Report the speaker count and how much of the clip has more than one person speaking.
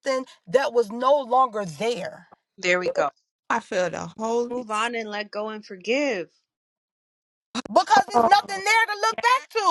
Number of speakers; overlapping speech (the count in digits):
3, about 8%